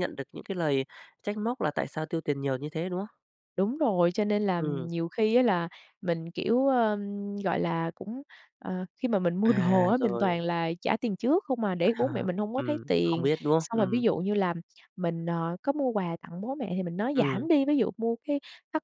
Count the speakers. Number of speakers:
2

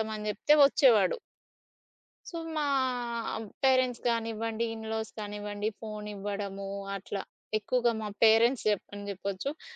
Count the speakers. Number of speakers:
1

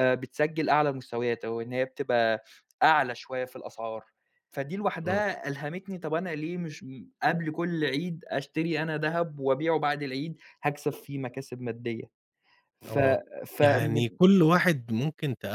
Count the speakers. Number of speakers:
2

